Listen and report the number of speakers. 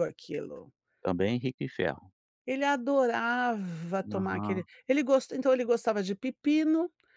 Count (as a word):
two